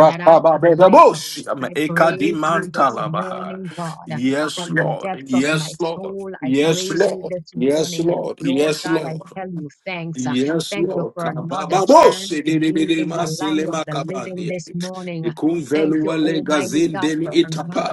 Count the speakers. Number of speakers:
2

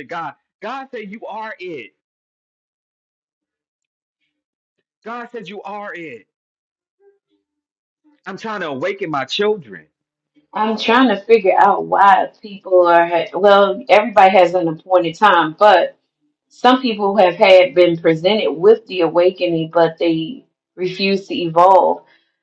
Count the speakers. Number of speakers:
2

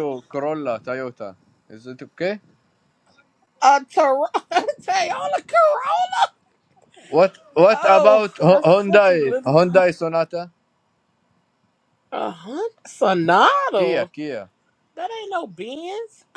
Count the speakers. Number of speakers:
2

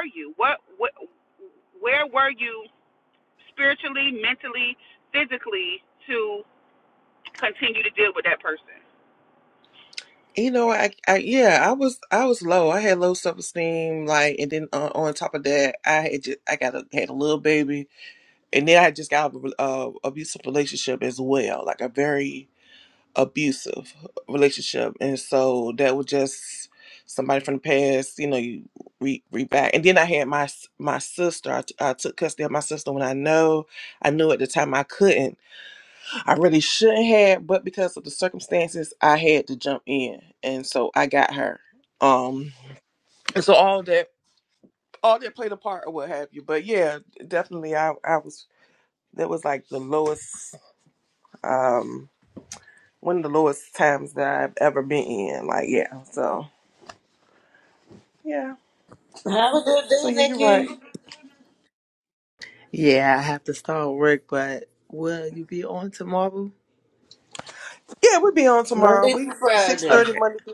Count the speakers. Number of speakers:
4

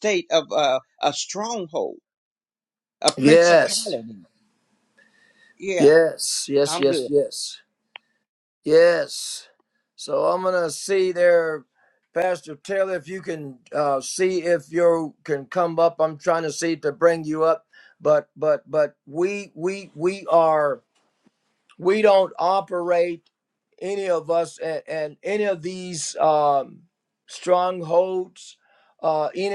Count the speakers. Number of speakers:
2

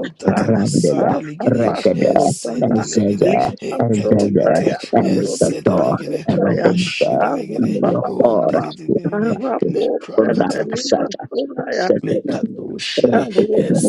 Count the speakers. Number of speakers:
3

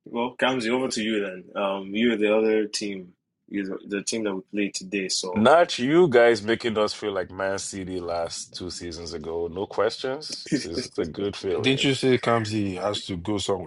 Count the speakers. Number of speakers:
3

